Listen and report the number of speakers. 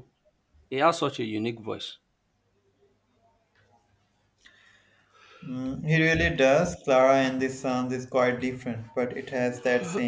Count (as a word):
two